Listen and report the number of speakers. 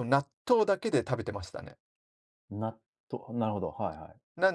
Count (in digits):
2